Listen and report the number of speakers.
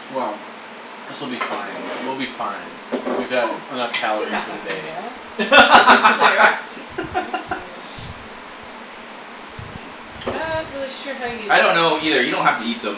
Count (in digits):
3